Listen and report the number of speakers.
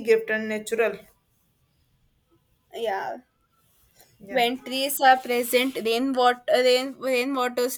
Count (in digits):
2